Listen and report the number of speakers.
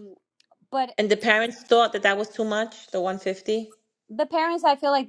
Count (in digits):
2